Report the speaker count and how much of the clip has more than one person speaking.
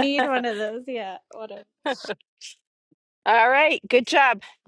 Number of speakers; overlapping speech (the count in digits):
2, no overlap